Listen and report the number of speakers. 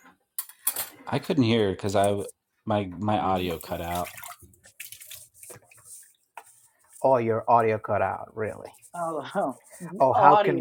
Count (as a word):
three